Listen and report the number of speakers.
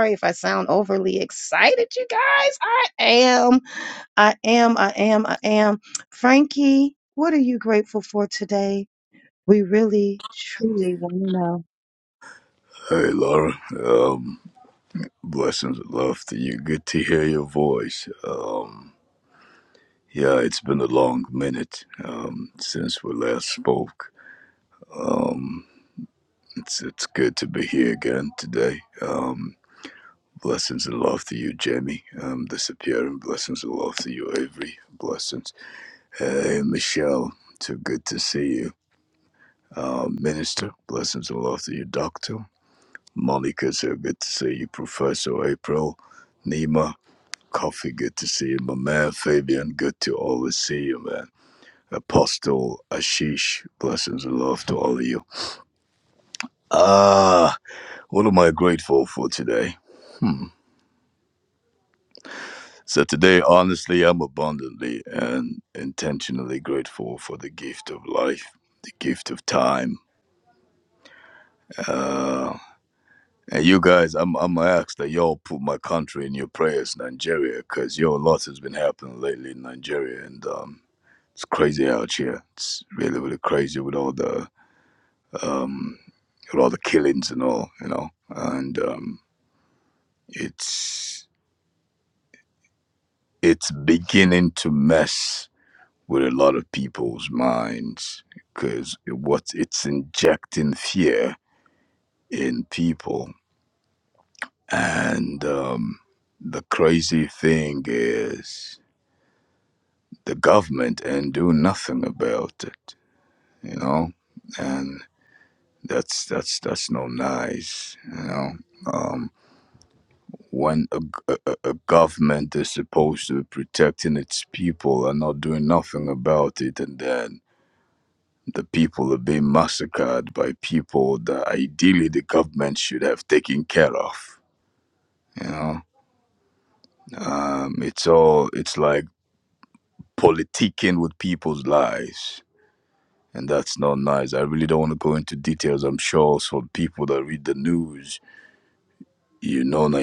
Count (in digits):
2